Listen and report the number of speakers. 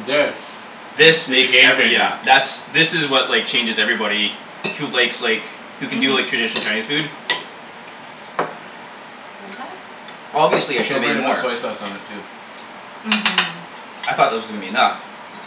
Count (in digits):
3